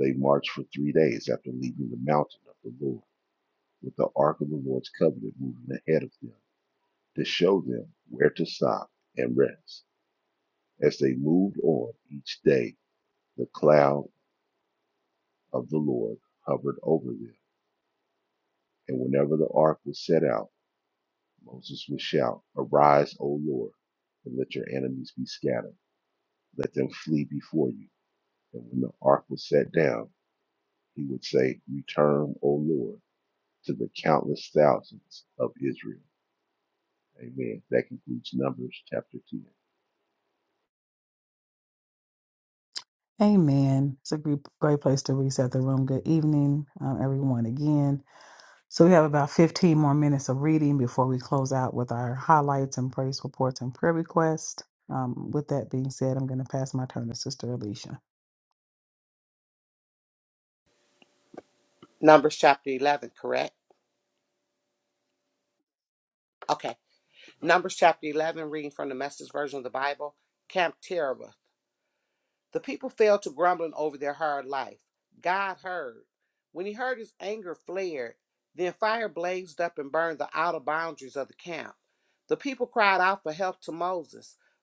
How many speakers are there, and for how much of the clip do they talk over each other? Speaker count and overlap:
3, no overlap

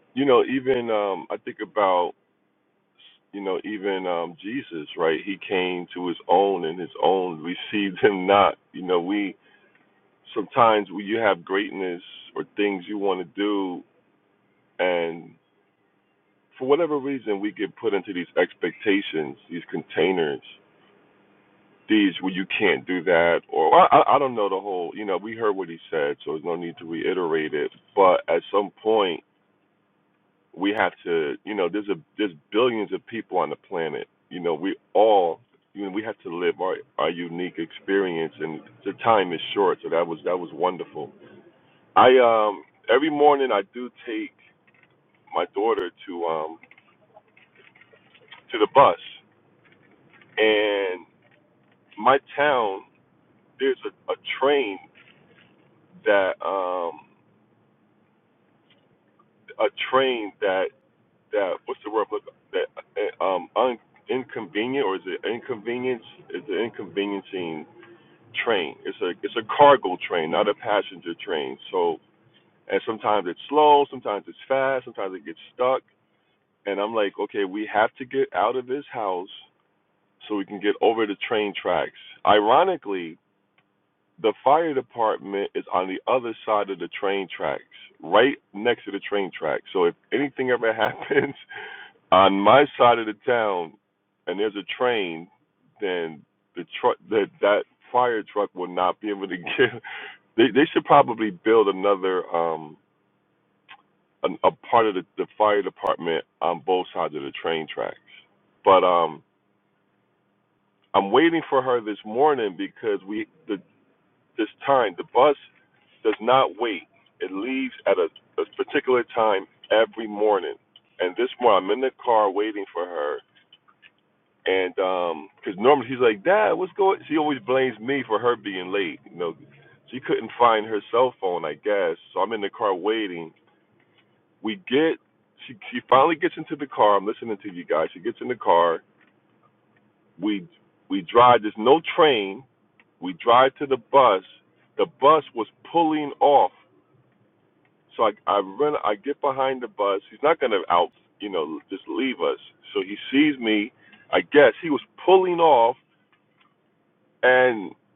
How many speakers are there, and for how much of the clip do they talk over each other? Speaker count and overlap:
1, no overlap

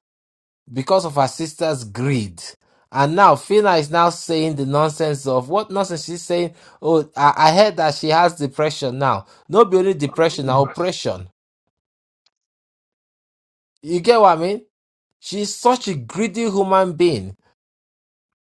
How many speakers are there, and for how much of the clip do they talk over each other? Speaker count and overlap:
1, no overlap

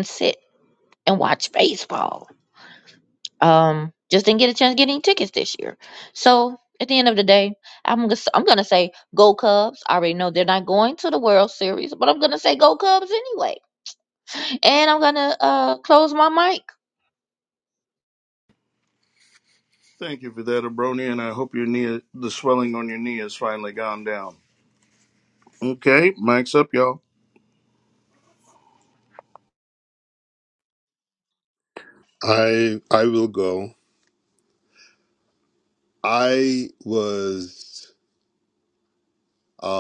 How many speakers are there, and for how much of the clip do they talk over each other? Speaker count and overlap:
3, no overlap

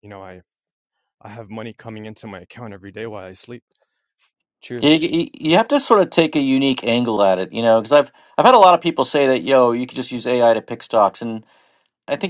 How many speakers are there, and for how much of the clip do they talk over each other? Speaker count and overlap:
2, about 1%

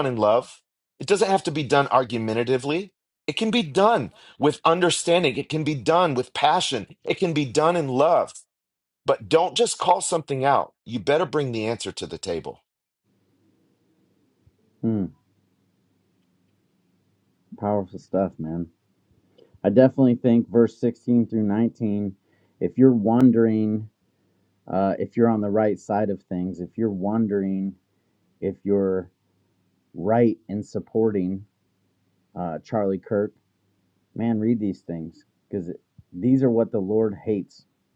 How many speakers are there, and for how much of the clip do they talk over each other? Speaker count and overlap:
2, no overlap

